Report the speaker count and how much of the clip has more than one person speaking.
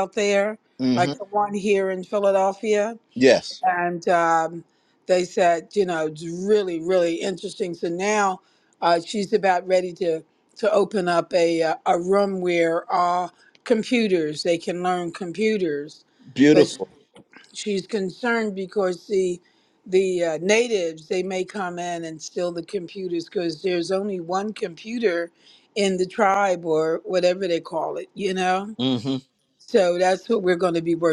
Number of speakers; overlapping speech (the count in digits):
2, about 1%